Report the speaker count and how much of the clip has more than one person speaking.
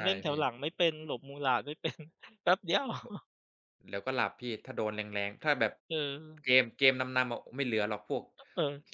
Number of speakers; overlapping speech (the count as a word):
two, about 4%